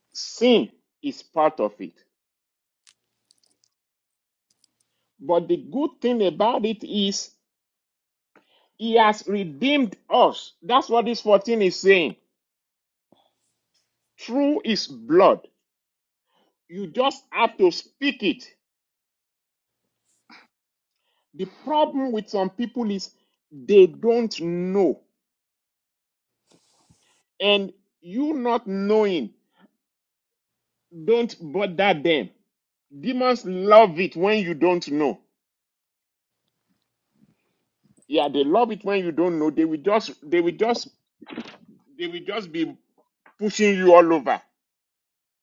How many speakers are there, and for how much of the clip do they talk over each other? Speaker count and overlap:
1, no overlap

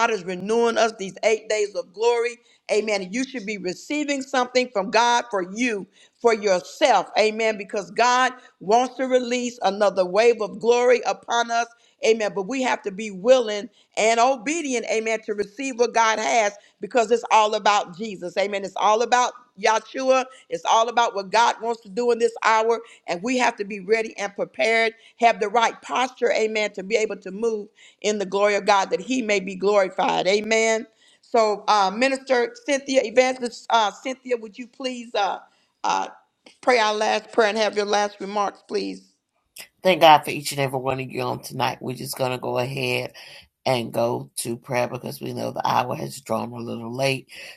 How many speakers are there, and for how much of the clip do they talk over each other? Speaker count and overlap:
2, no overlap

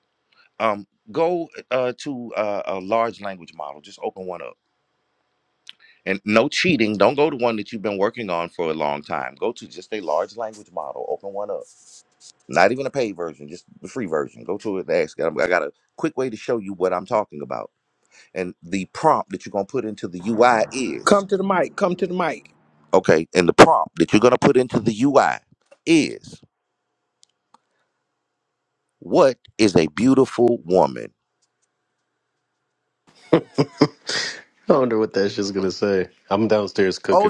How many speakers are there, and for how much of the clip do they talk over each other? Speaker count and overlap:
3, about 1%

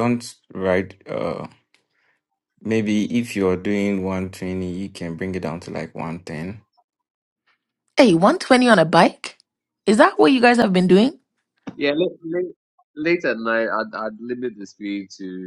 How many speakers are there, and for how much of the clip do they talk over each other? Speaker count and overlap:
3, no overlap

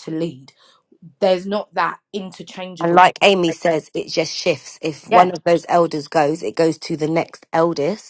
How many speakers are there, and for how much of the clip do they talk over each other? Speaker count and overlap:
2, about 5%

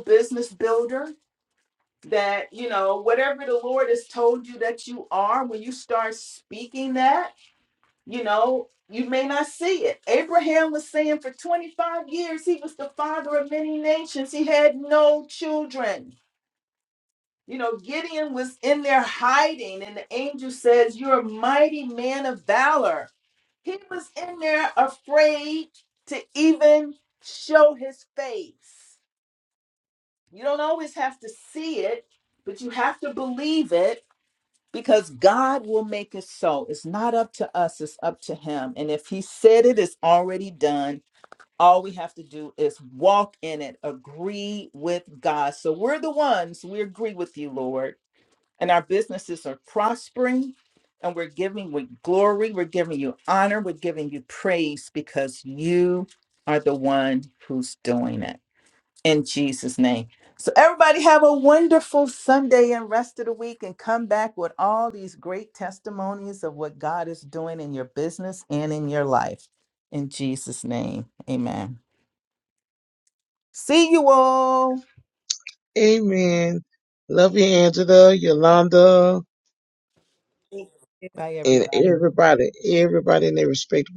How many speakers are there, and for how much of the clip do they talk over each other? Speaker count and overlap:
2, about 1%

